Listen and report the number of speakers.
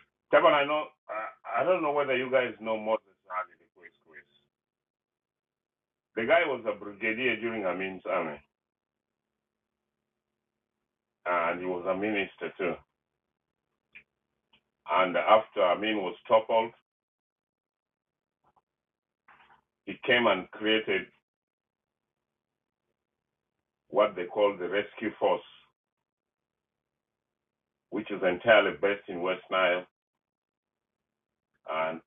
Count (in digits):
1